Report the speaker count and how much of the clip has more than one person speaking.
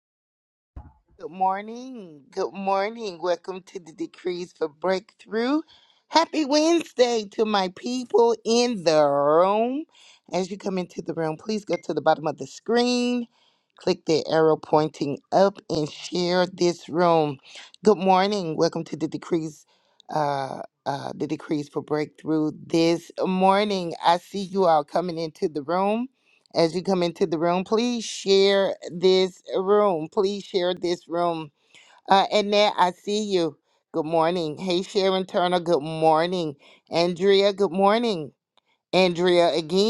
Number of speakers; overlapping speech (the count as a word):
one, no overlap